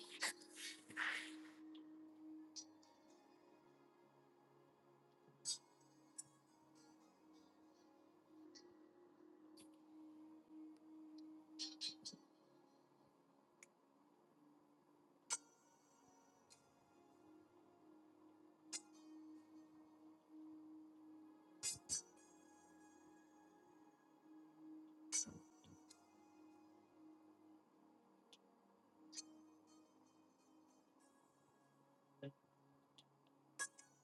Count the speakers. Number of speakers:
0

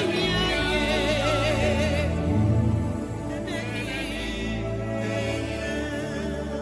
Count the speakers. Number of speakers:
0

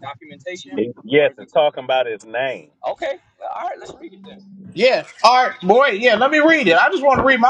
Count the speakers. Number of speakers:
3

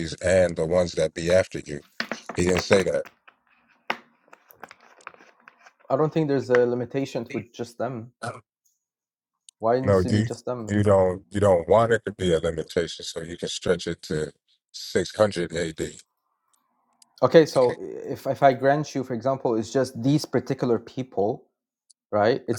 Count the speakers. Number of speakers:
2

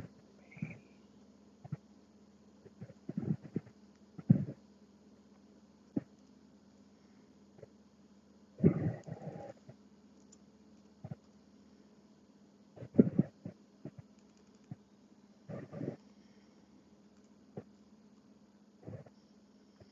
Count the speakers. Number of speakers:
0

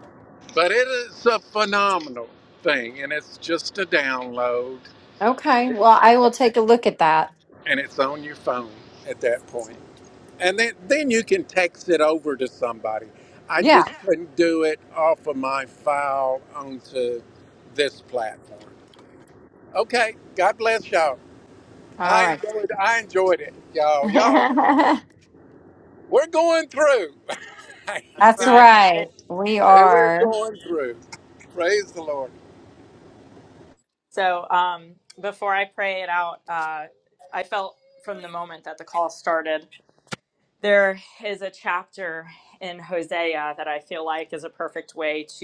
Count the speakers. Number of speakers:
3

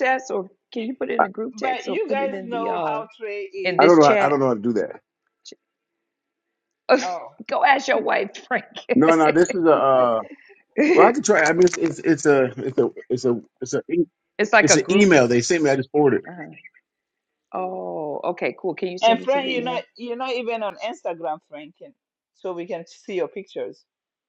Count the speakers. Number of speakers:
3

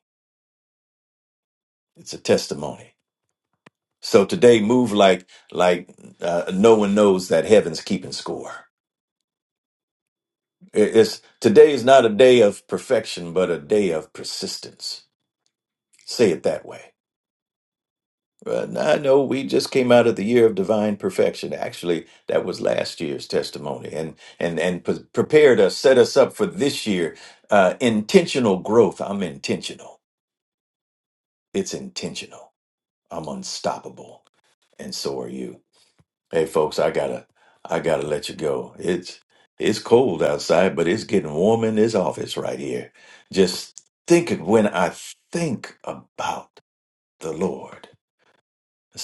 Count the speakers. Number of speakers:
1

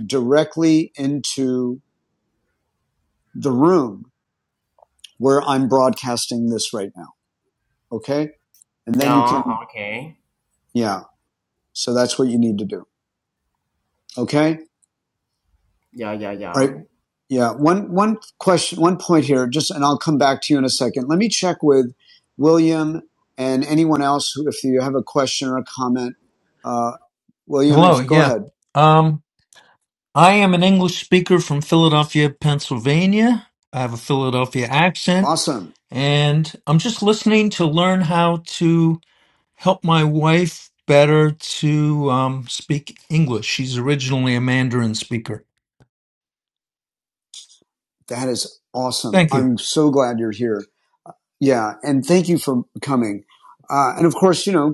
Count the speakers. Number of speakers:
3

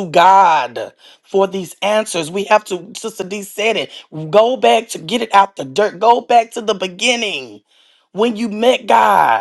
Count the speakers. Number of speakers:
1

